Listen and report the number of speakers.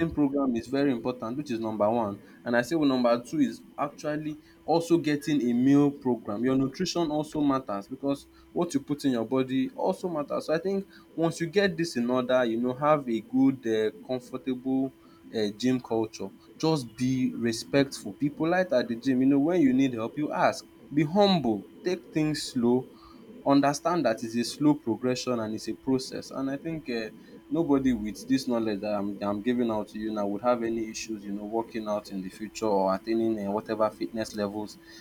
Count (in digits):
1